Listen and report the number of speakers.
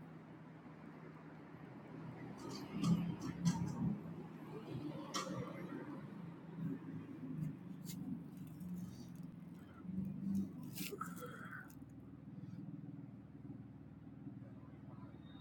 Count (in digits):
0